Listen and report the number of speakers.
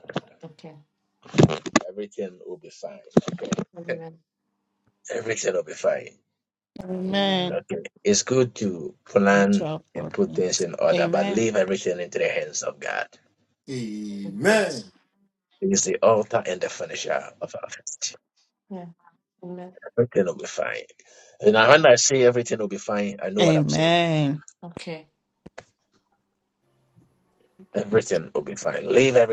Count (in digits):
4